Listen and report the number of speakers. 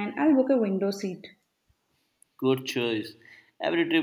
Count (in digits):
2